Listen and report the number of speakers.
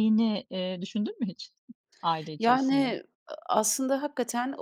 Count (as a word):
two